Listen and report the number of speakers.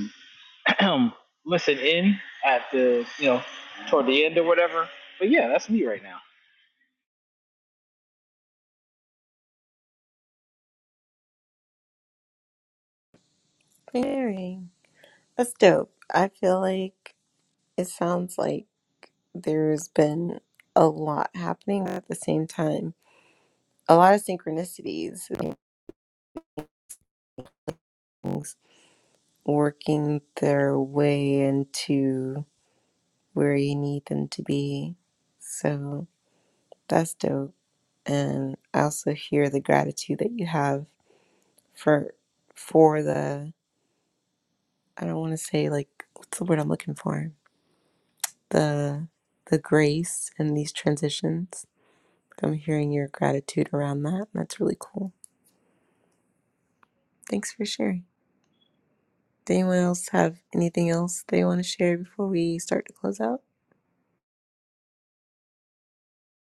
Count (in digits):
2